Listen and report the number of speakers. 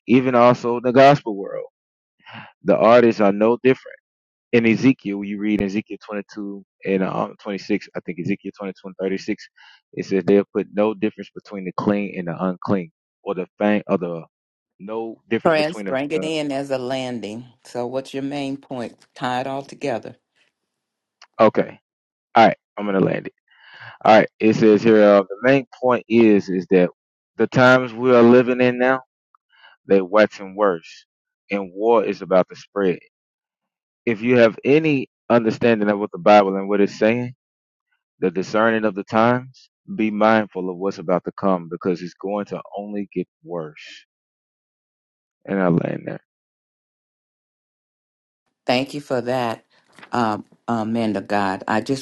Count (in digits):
2